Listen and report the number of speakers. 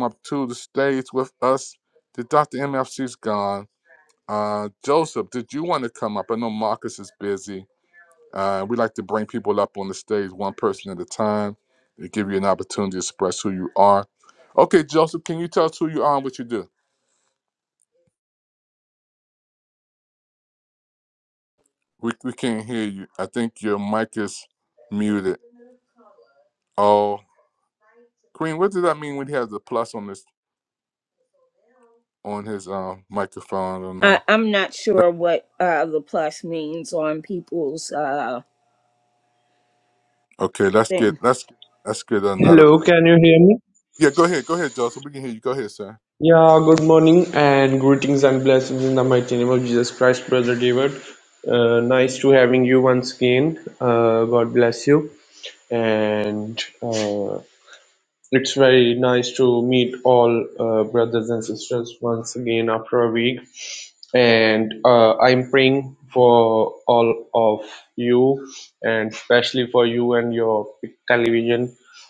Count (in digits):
3